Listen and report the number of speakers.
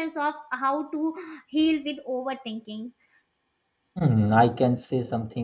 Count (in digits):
2